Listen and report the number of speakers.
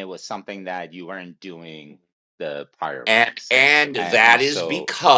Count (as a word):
two